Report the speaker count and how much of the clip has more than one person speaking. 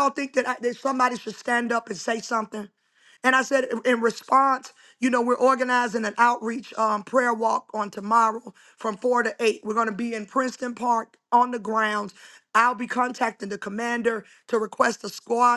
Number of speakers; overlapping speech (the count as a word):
one, no overlap